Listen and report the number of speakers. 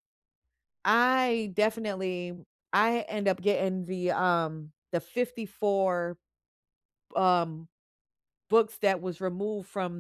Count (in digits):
1